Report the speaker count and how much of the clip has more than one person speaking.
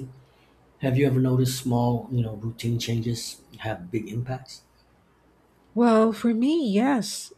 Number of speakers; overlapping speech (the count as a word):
two, no overlap